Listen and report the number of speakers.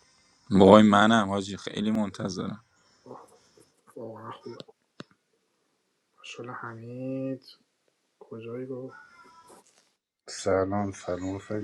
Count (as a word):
three